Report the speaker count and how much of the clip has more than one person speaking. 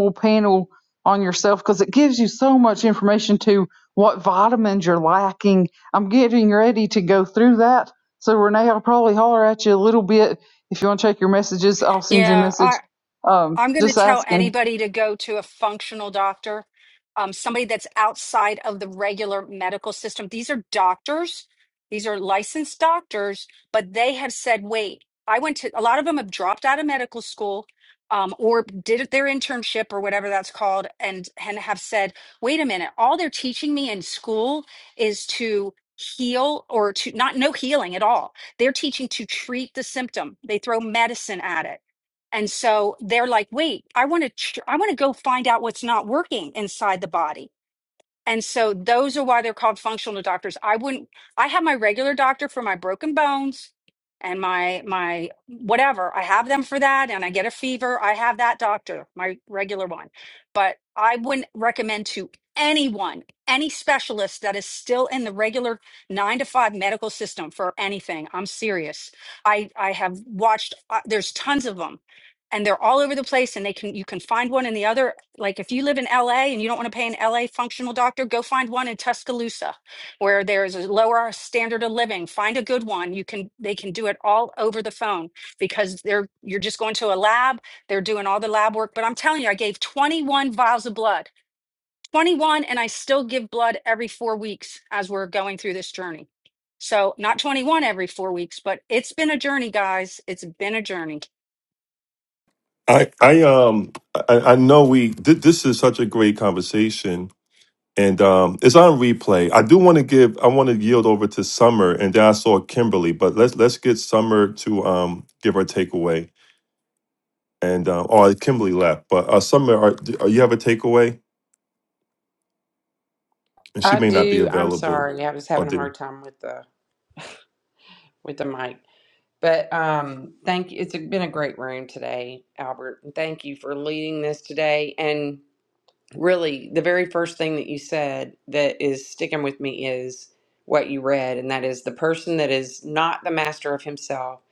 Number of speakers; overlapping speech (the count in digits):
4, about 2%